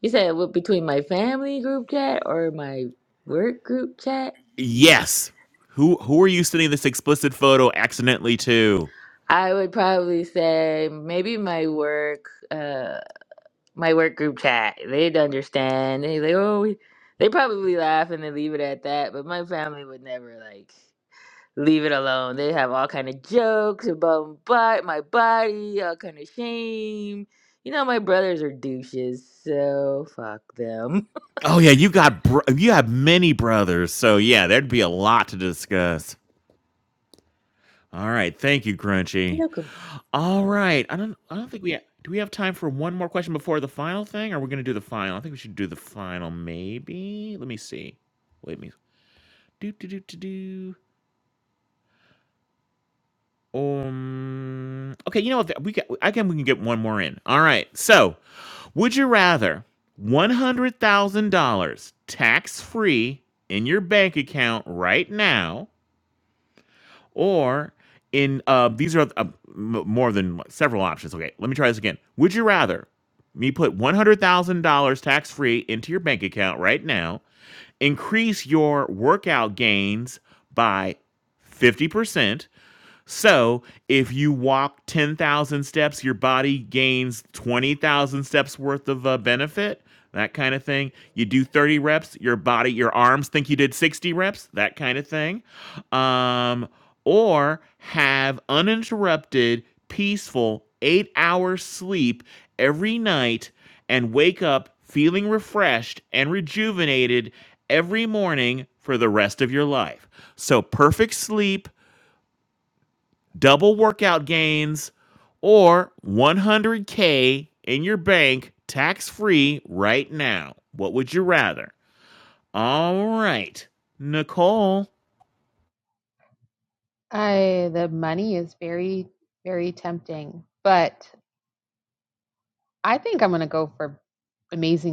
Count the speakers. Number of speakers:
3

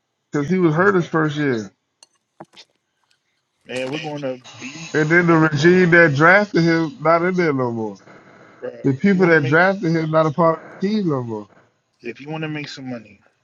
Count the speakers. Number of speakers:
2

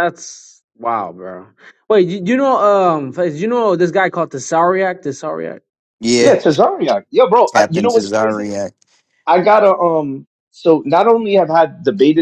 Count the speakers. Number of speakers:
3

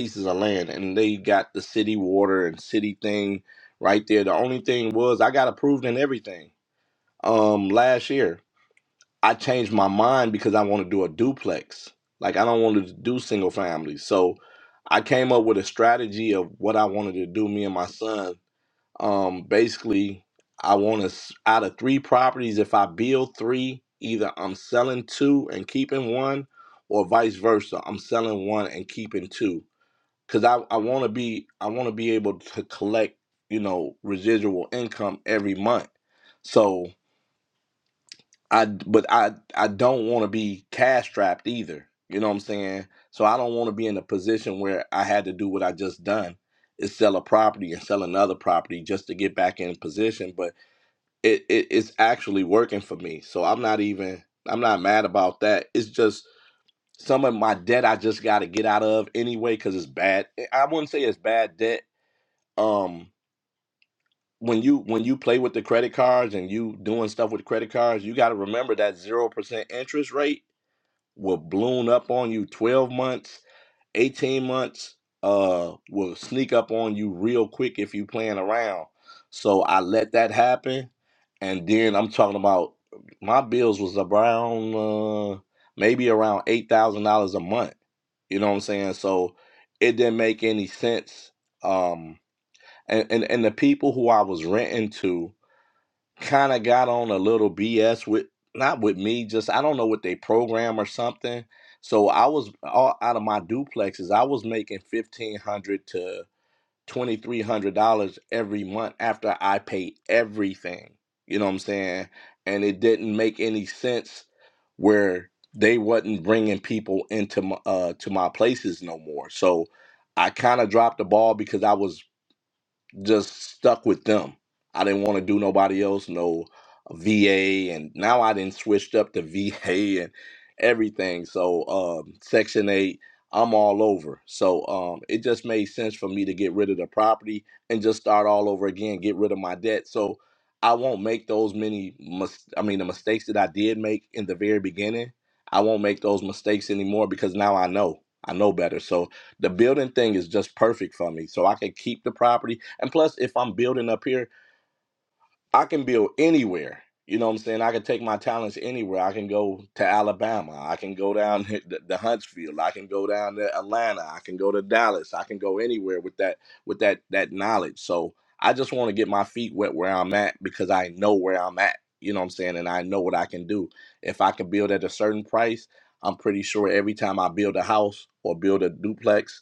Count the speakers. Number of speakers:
1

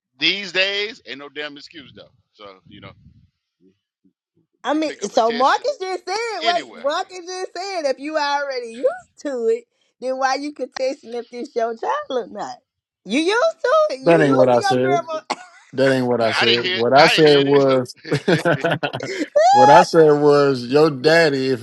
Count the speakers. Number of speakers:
3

